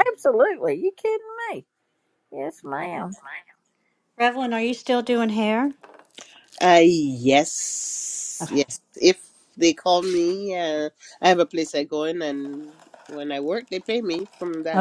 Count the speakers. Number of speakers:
three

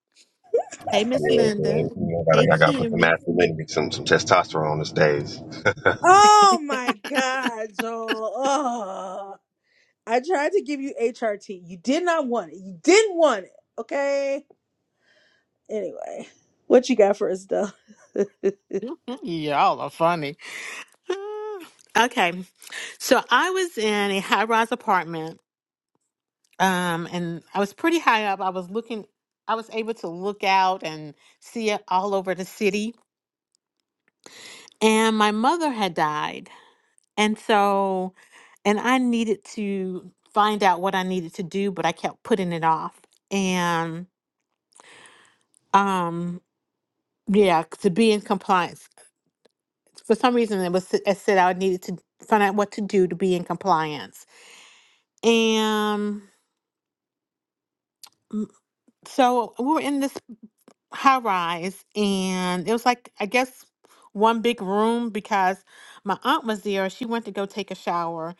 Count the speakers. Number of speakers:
three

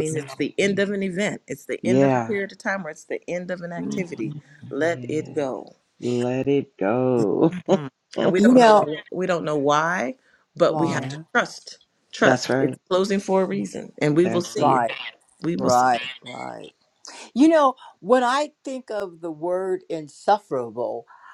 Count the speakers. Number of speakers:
three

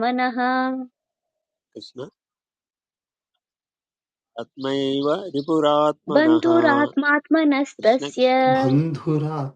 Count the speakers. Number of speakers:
three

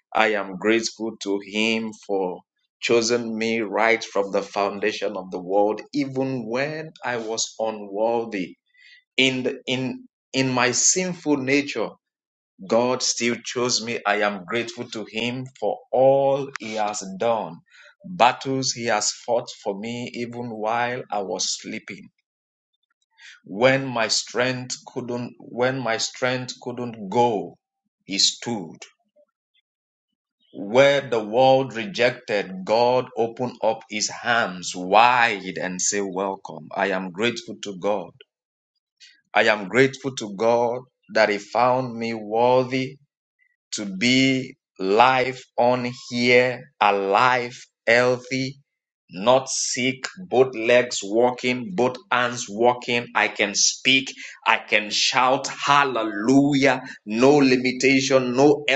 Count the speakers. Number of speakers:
one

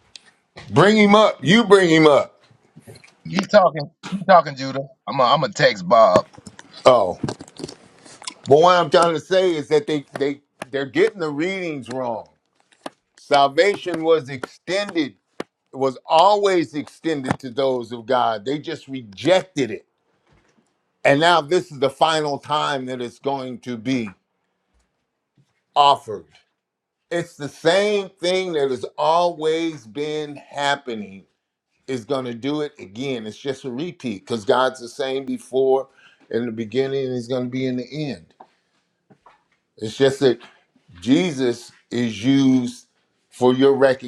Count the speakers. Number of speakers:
two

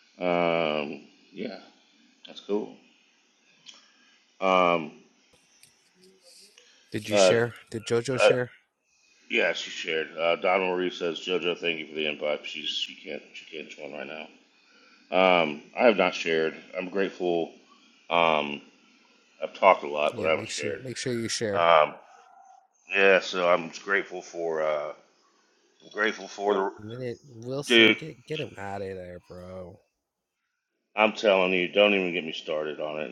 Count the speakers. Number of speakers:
two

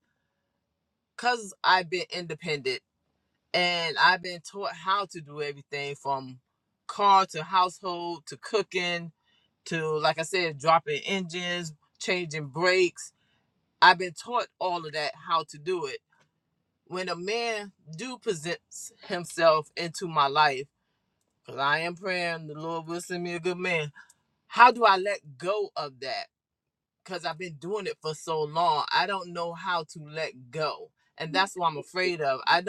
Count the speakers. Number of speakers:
one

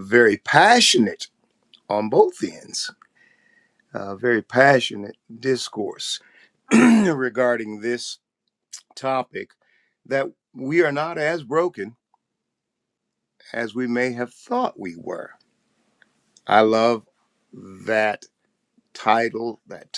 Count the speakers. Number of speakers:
one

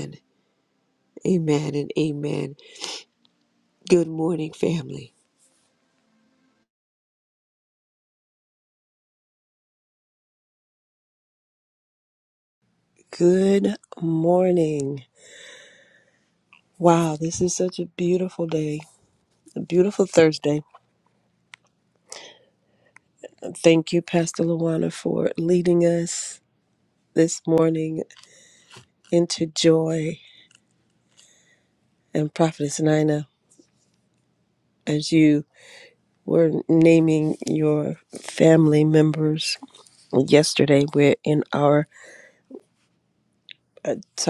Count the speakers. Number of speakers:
two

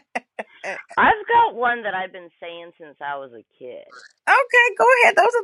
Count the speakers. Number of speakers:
two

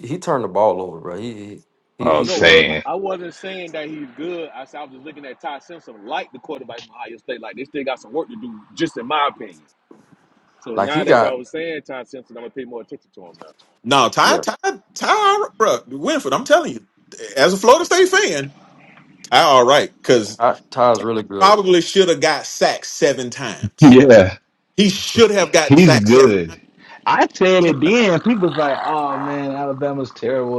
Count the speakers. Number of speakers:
four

